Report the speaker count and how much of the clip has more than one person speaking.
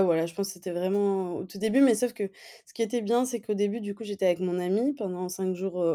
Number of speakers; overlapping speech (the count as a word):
one, no overlap